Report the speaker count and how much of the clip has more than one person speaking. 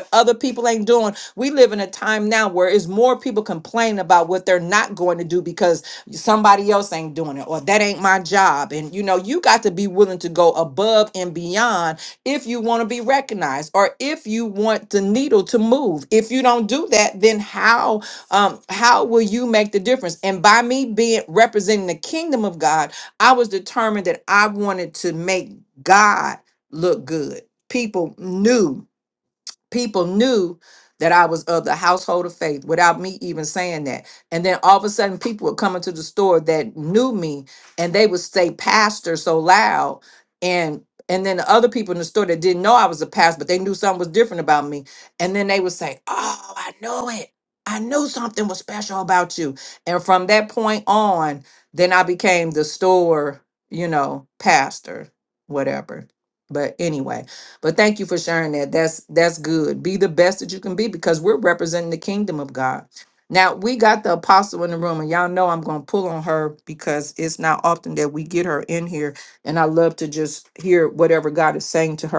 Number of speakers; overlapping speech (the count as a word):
one, no overlap